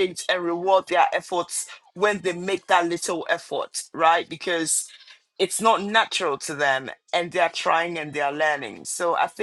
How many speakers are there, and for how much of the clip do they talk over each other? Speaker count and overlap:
1, no overlap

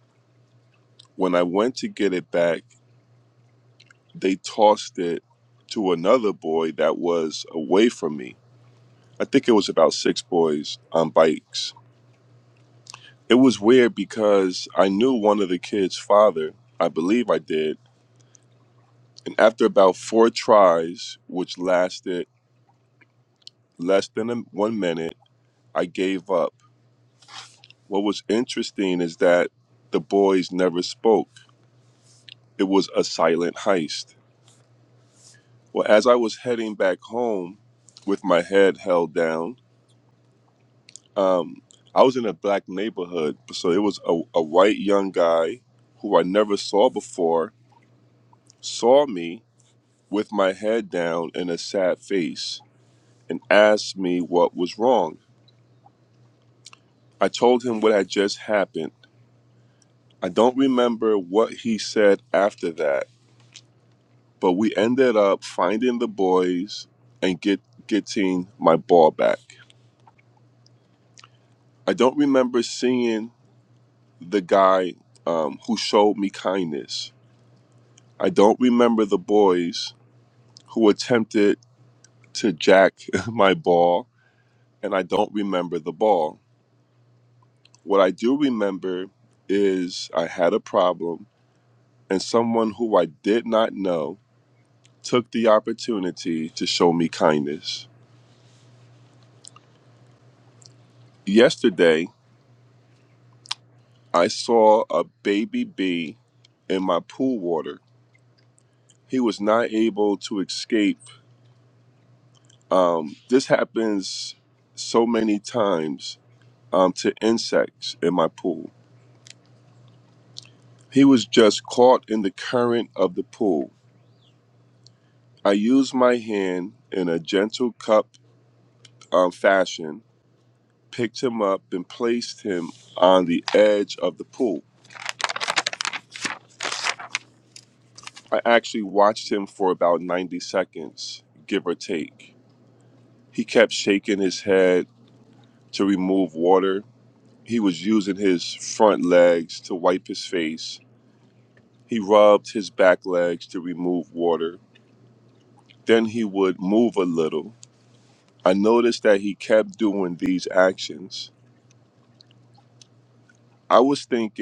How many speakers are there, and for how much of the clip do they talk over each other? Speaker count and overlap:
1, no overlap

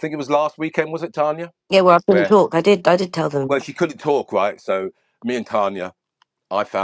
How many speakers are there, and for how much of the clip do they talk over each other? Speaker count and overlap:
2, about 6%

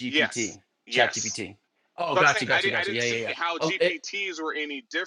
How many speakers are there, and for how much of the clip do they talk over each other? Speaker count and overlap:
2, about 49%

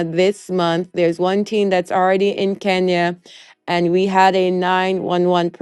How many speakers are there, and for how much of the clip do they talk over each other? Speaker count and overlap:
1, no overlap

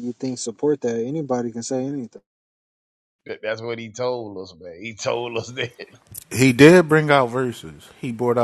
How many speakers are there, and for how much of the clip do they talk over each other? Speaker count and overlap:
3, no overlap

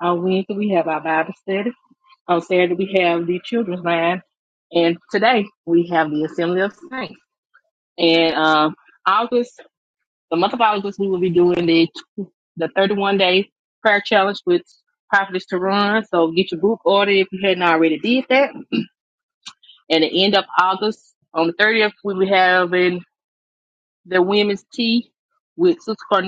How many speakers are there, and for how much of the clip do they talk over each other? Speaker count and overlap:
1, no overlap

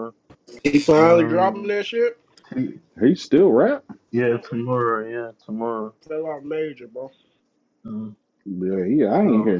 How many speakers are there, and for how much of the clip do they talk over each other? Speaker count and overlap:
3, about 11%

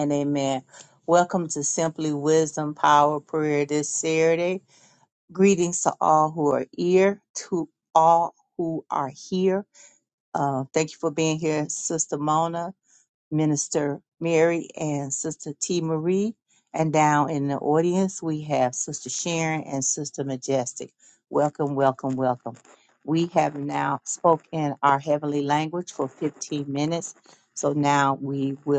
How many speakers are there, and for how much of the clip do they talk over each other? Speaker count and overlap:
1, no overlap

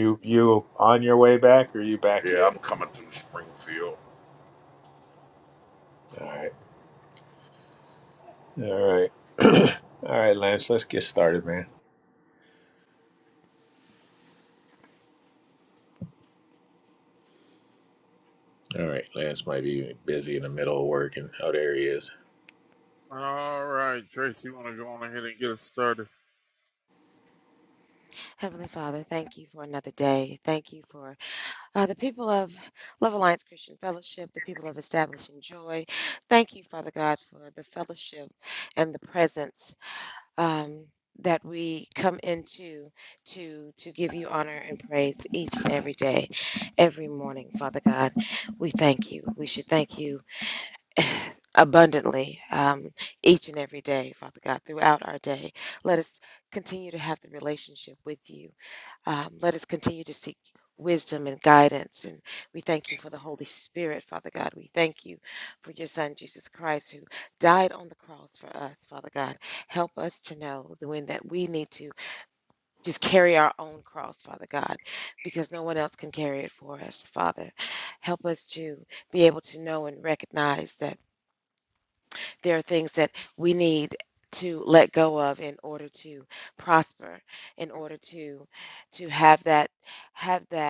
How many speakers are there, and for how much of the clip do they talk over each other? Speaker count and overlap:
4, under 1%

